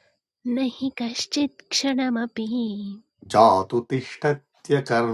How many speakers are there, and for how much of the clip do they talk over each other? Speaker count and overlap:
two, no overlap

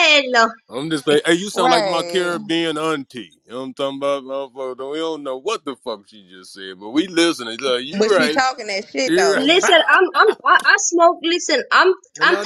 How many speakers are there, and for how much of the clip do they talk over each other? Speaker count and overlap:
three, about 21%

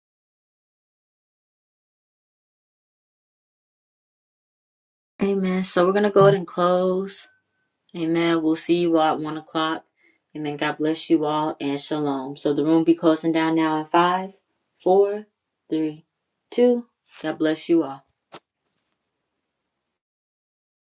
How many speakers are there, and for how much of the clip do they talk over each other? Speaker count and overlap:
one, no overlap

